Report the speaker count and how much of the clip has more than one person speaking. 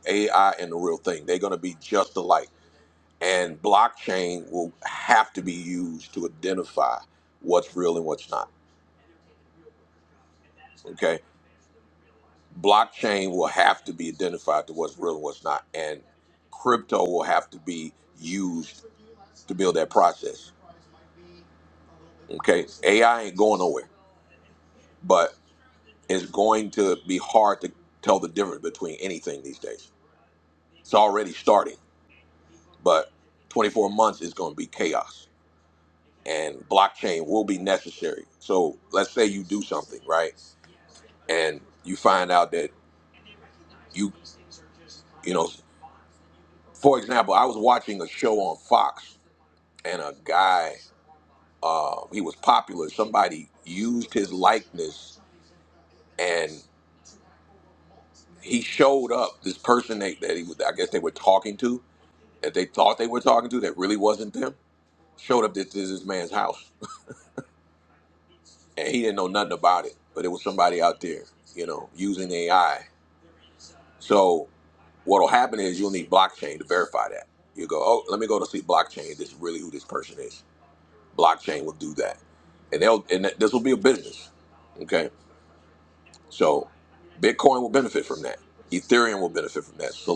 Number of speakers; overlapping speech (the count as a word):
one, no overlap